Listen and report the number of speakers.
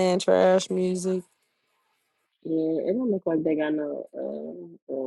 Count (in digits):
2